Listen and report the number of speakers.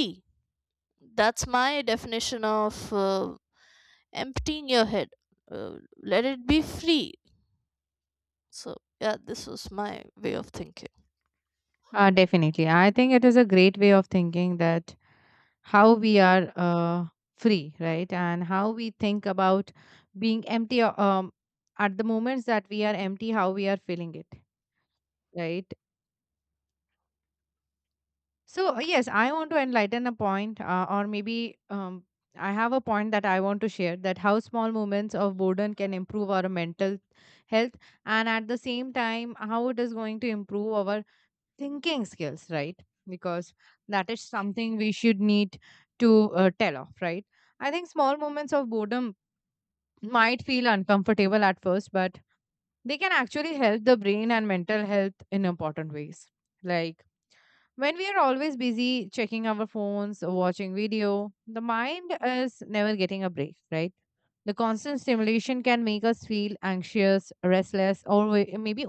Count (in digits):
2